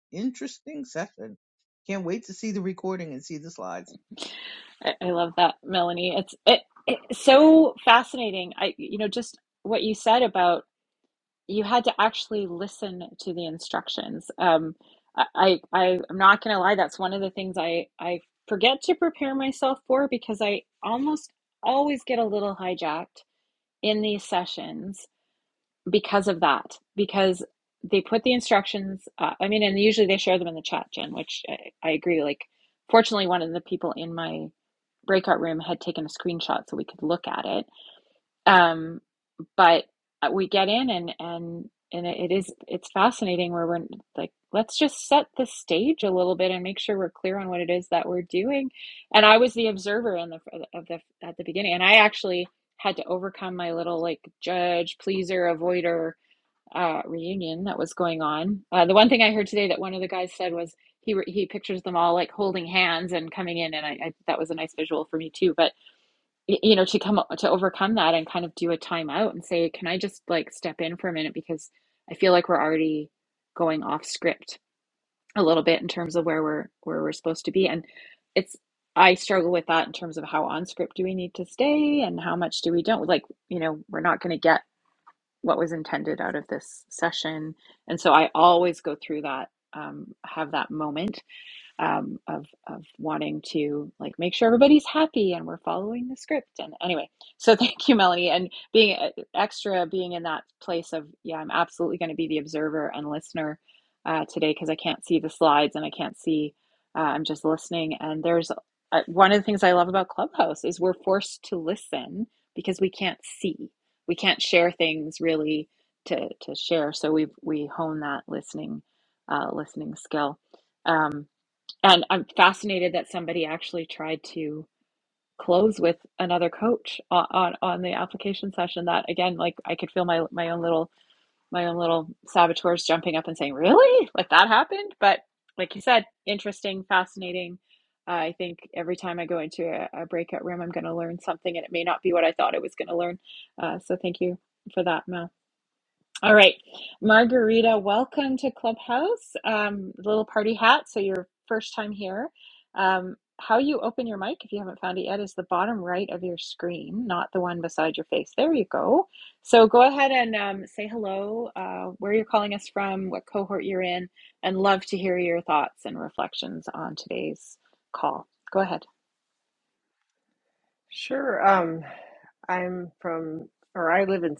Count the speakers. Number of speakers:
3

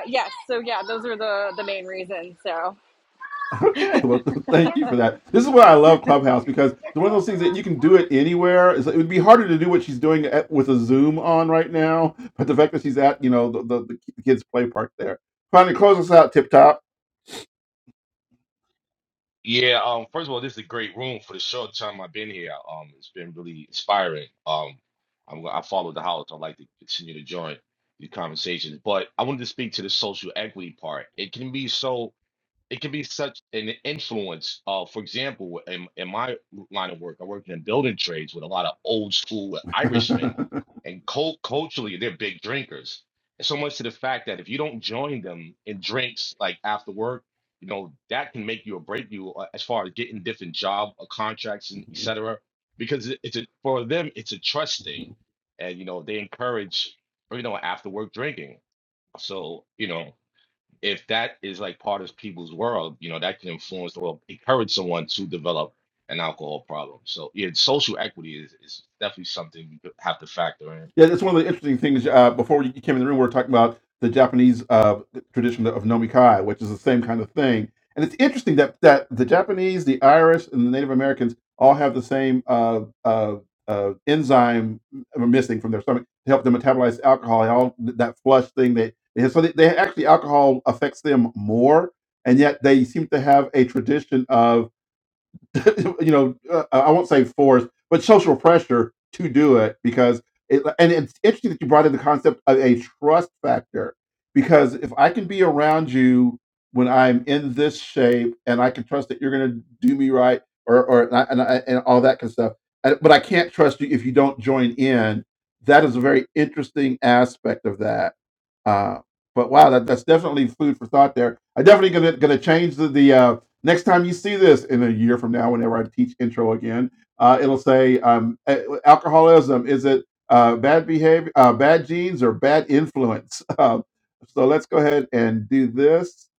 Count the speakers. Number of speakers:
3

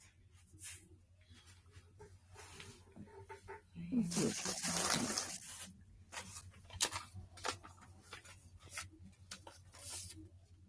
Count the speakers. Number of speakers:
0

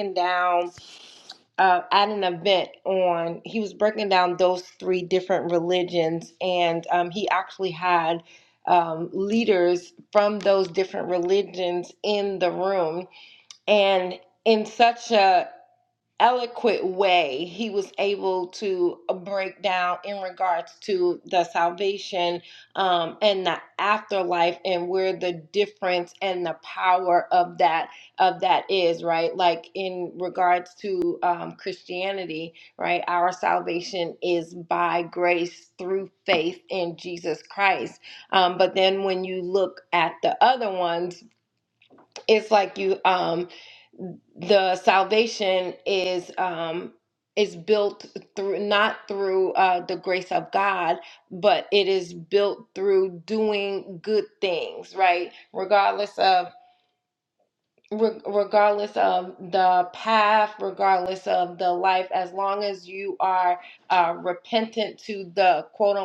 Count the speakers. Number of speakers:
1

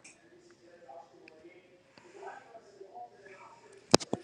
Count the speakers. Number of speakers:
0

